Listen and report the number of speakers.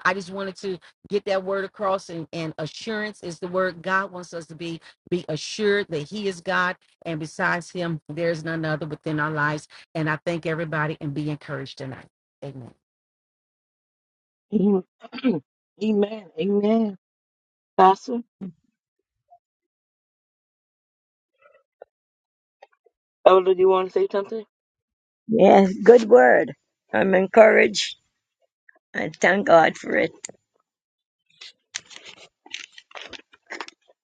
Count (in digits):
3